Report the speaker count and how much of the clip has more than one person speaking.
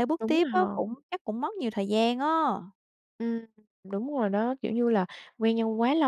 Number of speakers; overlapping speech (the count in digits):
2, about 10%